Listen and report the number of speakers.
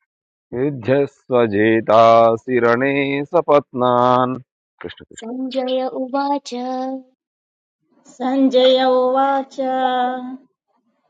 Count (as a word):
three